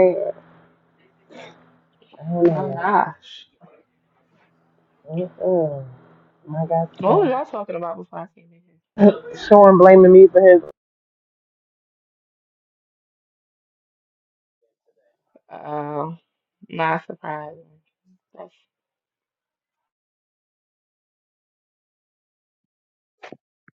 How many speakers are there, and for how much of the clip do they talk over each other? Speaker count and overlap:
two, about 3%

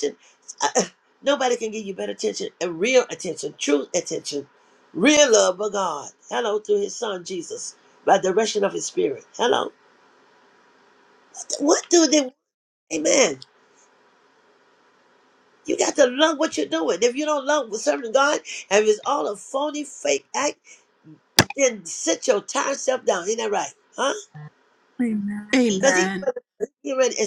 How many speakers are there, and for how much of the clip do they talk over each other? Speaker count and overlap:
two, about 1%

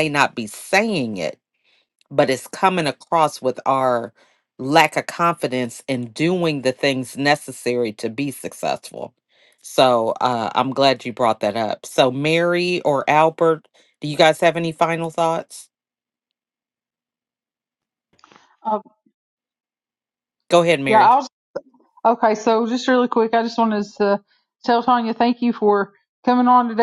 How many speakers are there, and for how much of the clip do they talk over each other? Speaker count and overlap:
two, about 1%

